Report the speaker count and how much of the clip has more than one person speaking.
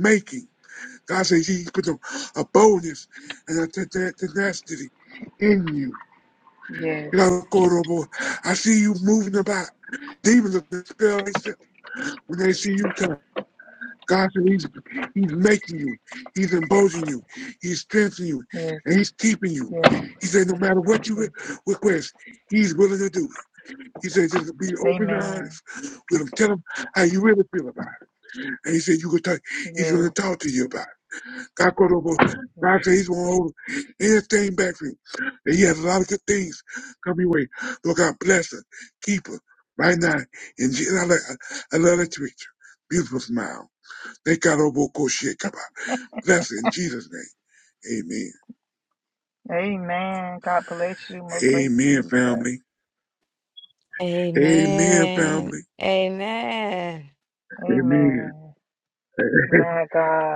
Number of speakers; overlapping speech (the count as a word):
three, about 6%